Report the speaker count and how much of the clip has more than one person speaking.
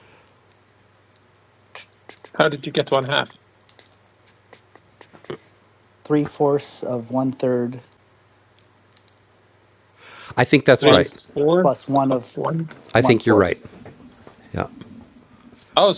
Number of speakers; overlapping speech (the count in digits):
3, about 10%